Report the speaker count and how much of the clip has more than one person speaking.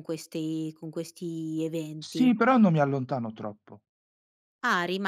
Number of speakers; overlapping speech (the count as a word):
two, about 6%